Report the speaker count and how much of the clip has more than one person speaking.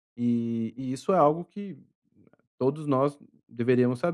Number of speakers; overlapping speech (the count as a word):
one, no overlap